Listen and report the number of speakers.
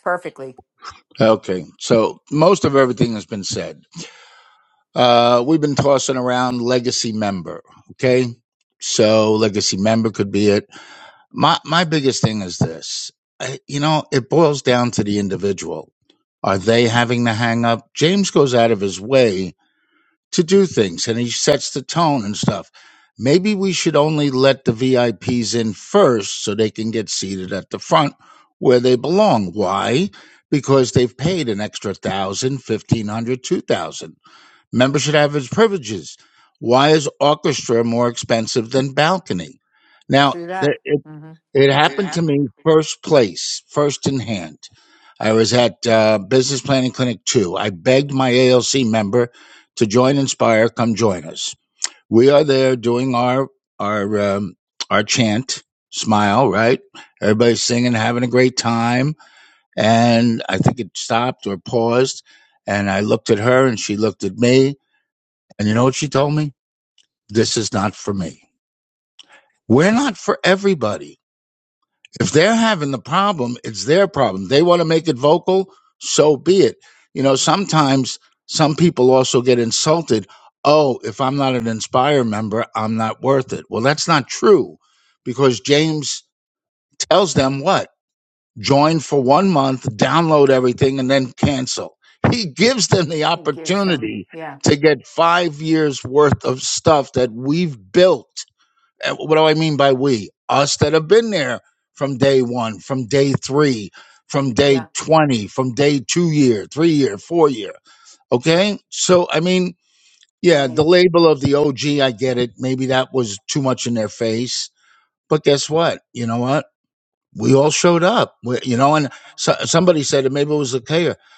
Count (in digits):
2